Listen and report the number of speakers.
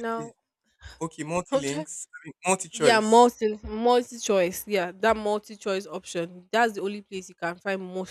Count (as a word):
two